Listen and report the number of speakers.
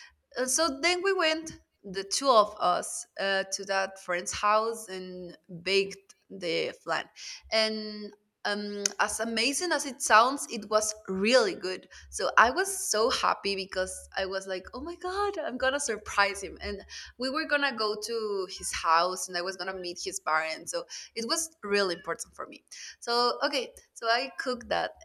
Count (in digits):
1